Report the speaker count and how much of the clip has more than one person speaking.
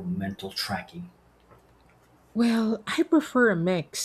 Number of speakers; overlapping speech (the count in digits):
2, no overlap